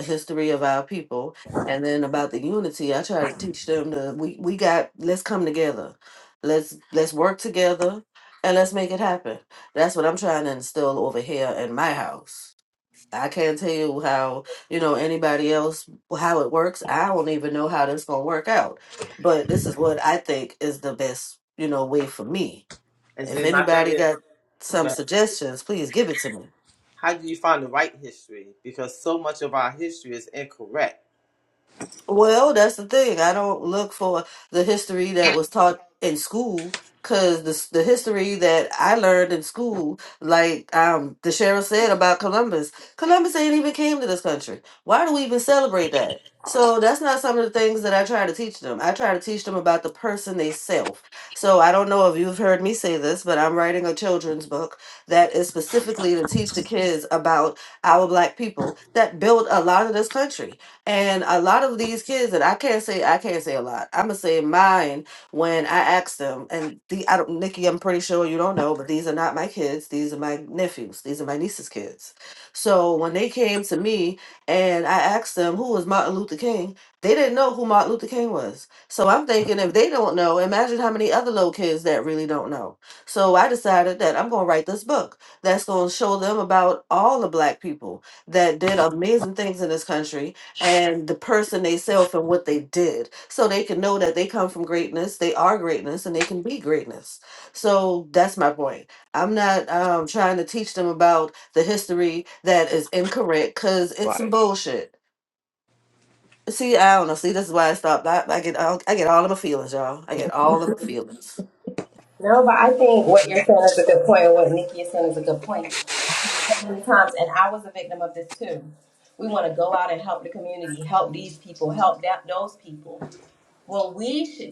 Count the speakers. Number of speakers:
three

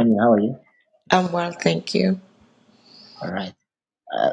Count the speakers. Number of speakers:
two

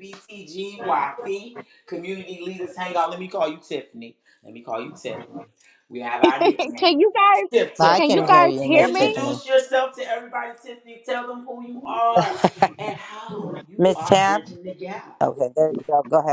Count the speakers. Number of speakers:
three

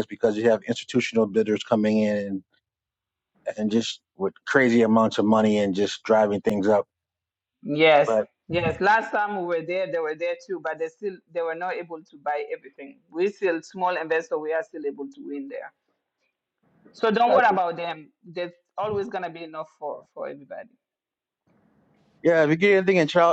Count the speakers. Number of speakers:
two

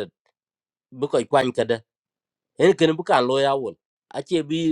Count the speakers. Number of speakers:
one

